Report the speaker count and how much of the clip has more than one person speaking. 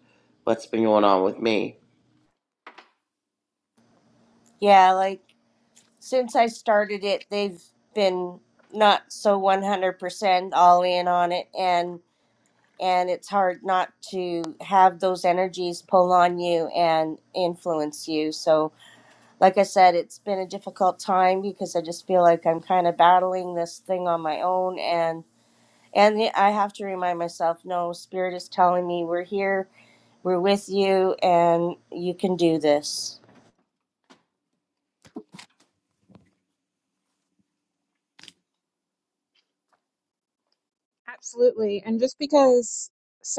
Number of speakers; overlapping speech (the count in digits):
3, no overlap